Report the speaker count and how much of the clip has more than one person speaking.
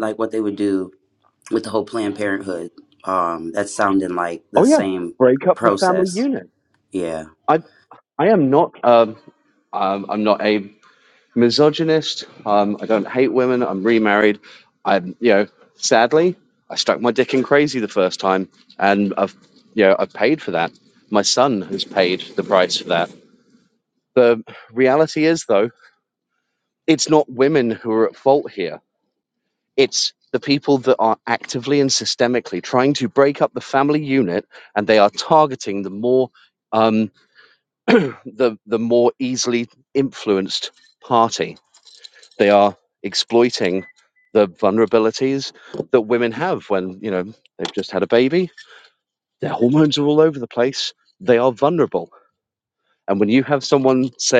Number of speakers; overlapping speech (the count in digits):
2, about 2%